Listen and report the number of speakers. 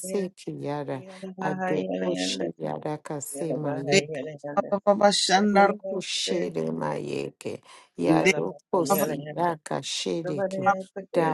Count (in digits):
3